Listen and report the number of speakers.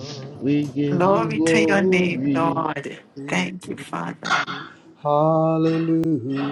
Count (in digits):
3